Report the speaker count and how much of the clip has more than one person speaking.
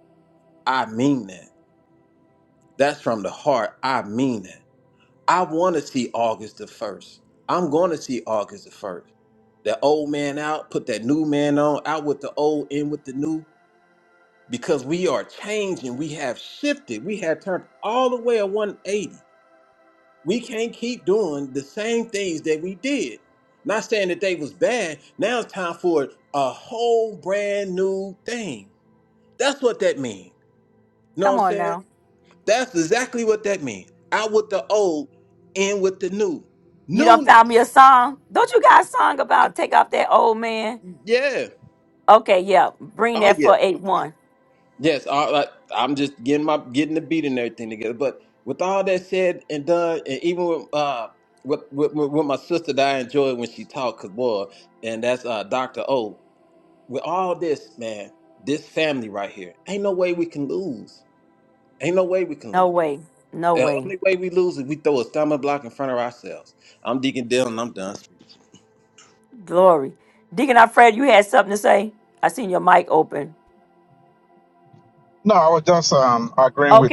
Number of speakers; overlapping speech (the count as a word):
three, about 3%